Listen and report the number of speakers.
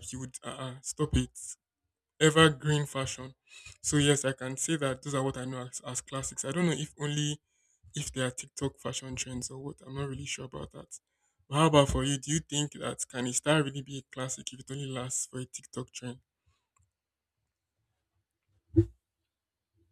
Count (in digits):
1